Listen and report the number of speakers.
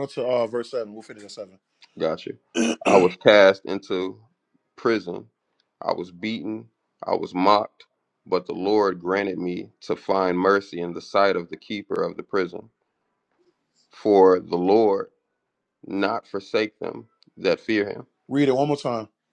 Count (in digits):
2